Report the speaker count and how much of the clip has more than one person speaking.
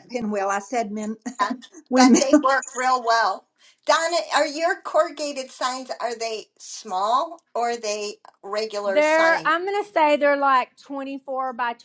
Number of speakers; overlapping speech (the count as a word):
three, about 8%